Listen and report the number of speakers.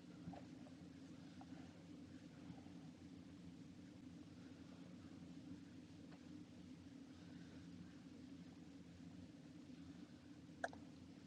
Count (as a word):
zero